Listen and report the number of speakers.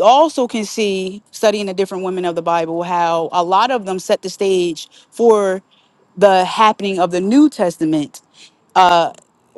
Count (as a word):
one